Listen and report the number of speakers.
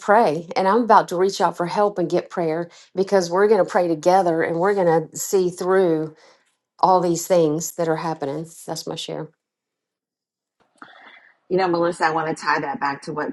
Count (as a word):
two